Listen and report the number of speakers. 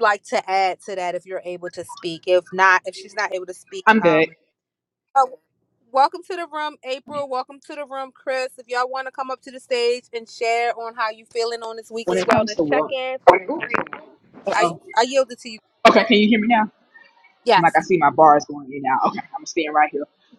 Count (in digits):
2